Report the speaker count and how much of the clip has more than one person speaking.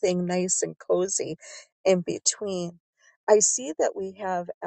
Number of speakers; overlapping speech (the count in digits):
1, no overlap